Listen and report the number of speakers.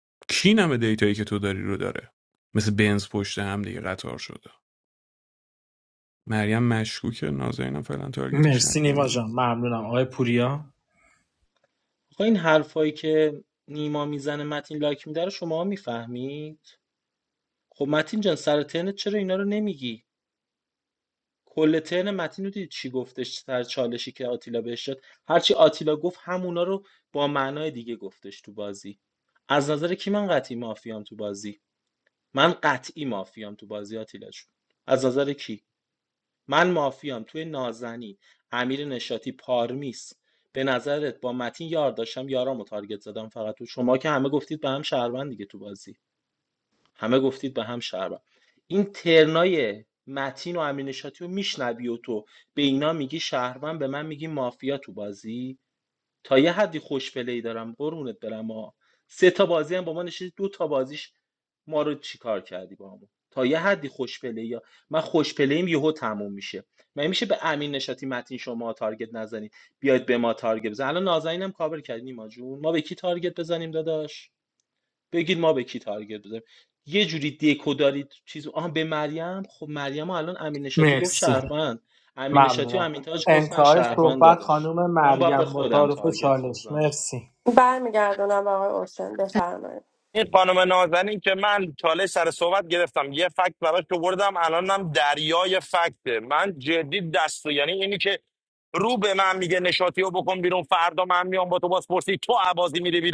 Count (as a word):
five